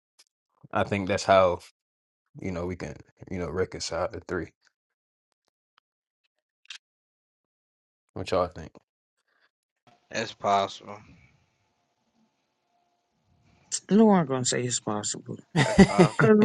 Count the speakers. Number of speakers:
three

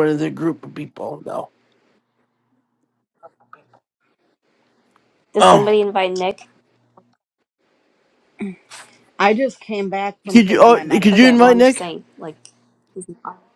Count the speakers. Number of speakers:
three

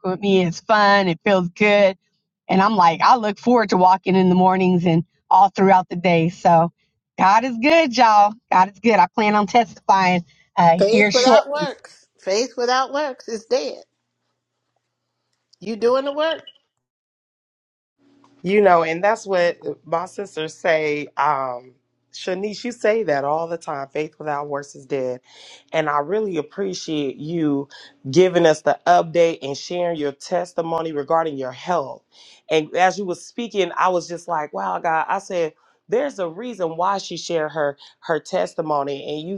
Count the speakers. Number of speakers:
three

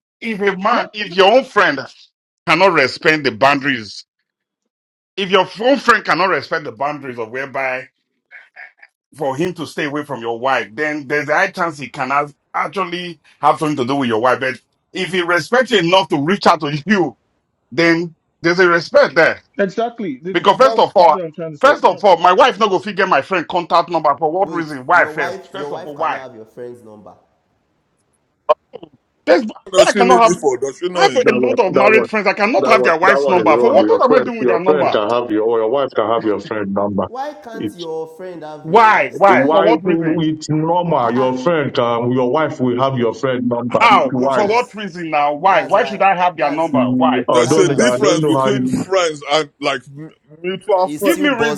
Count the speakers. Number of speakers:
five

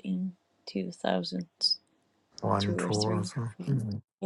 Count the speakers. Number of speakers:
two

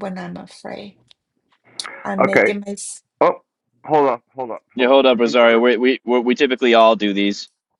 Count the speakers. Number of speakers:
three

